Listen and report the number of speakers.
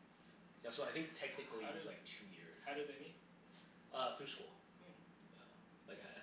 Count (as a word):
two